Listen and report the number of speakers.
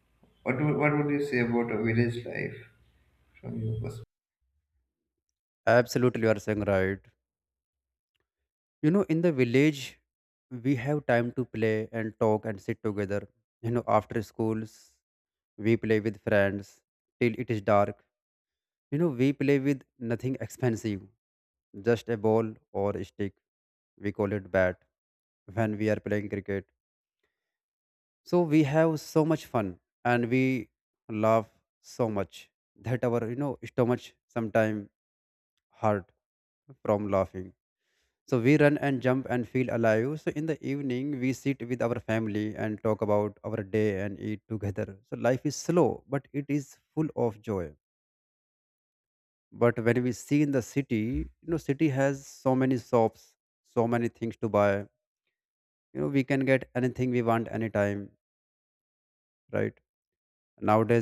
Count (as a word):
two